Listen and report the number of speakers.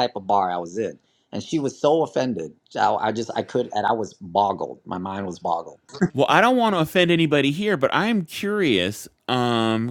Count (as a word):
two